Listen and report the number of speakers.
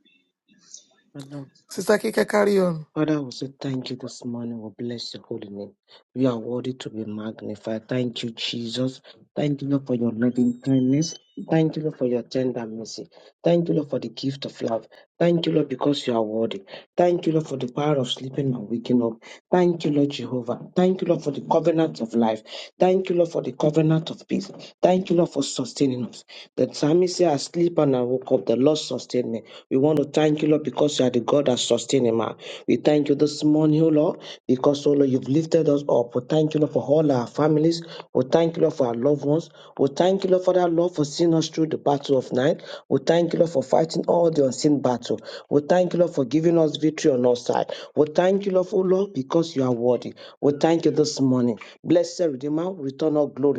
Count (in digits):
2